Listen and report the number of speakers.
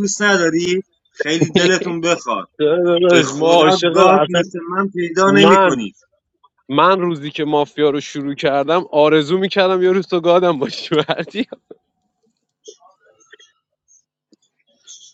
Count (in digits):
2